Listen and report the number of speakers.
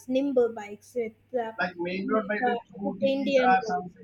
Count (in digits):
2